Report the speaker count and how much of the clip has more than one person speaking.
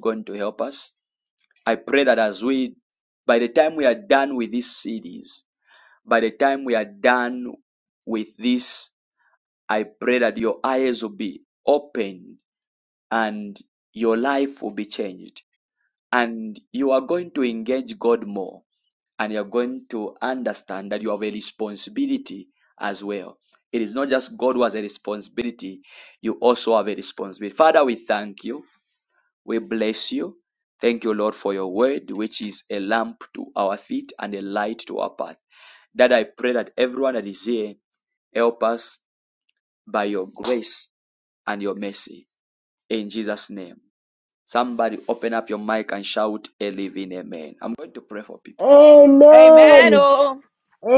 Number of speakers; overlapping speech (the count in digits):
3, about 1%